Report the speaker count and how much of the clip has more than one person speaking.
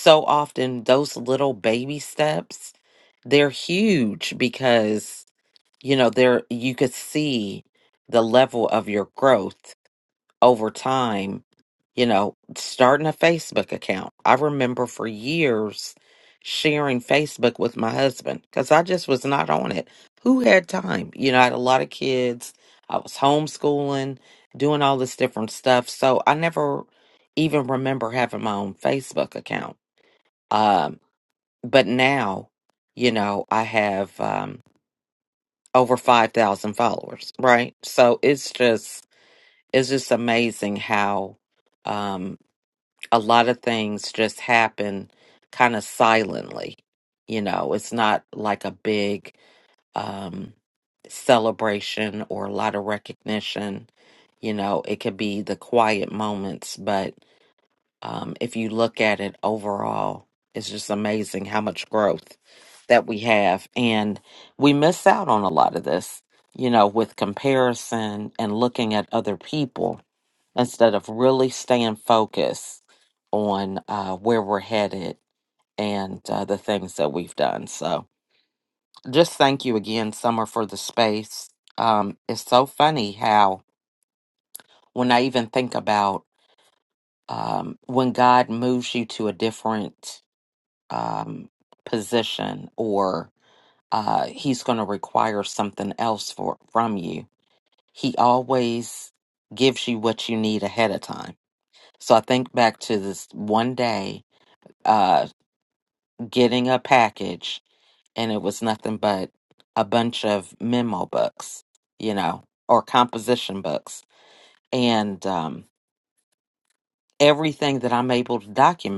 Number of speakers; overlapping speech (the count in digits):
1, no overlap